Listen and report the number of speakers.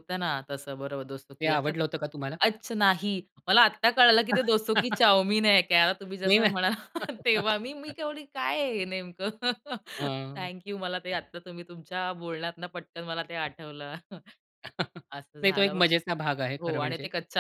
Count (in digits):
2